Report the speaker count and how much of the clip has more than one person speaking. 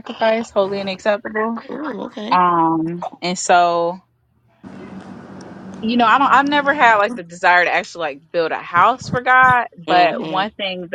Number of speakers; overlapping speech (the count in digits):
2, about 6%